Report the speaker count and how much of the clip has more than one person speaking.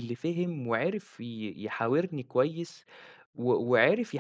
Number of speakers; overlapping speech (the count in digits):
1, no overlap